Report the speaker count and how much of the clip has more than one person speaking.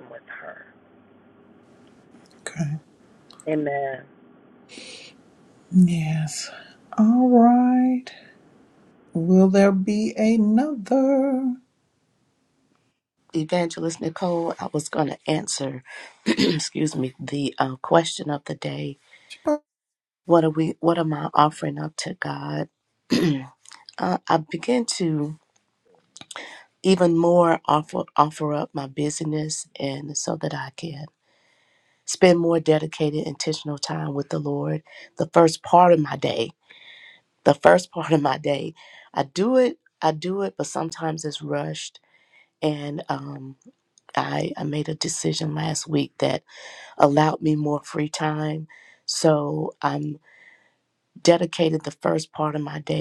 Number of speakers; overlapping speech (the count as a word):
three, no overlap